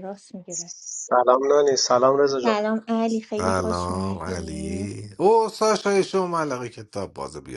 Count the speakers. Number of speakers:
3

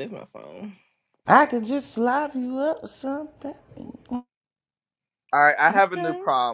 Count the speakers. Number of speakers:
3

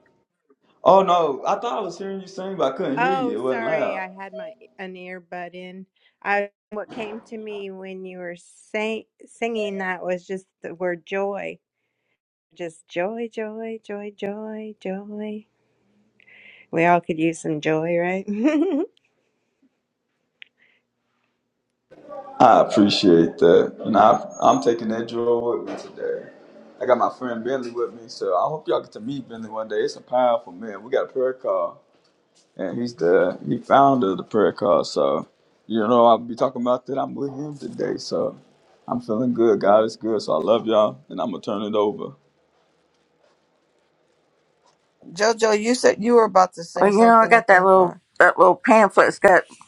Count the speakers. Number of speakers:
4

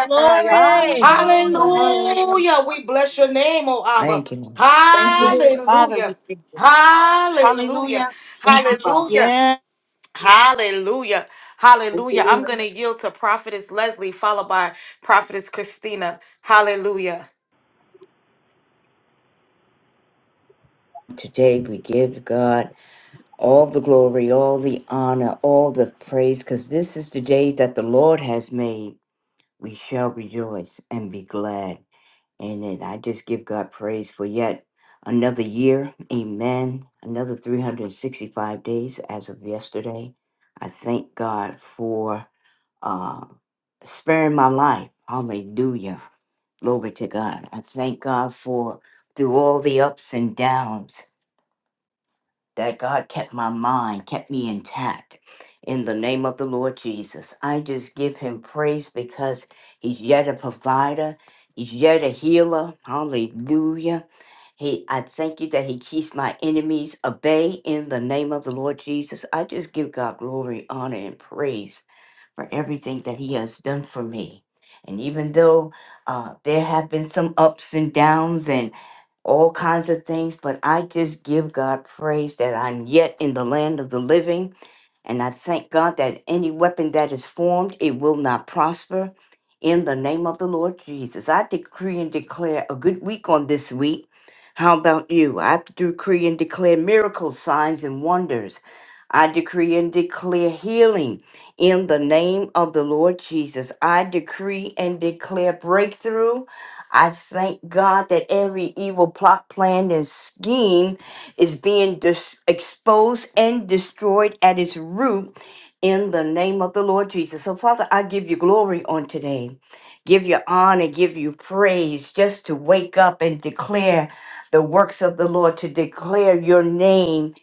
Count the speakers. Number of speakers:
4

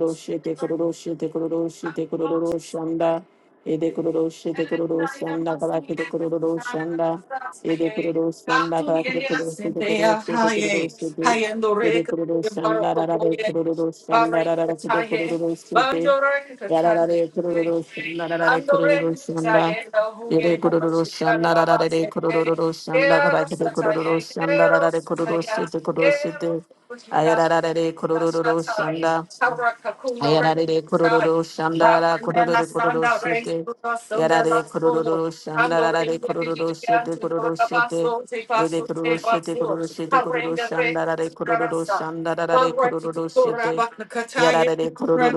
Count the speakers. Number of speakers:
2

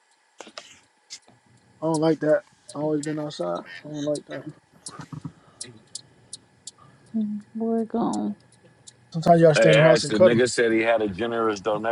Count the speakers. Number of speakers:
3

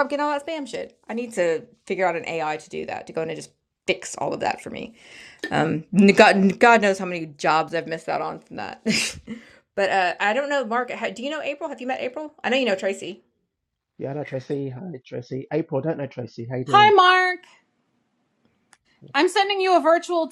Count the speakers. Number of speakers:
3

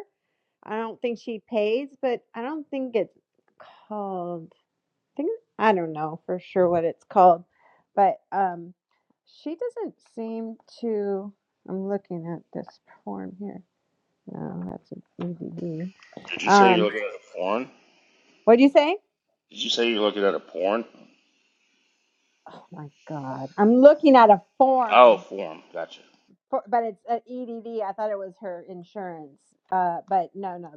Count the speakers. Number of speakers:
2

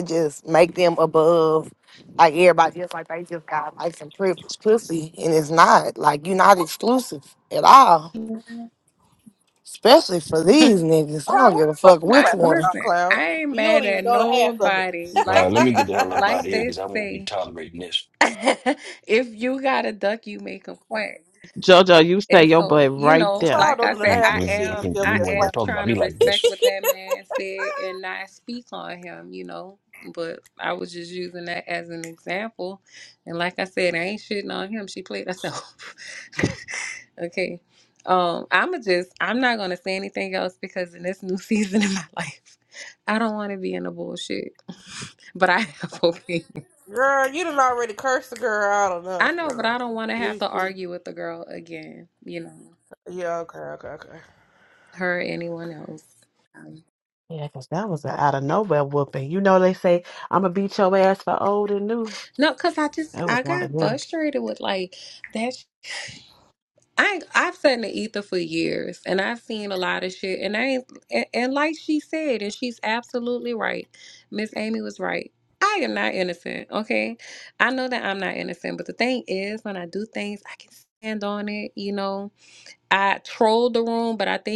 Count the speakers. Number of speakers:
5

